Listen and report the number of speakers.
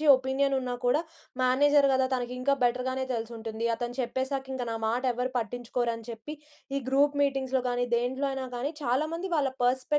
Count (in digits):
1